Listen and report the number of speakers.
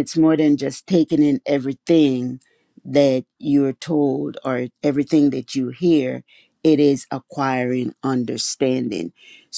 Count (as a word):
one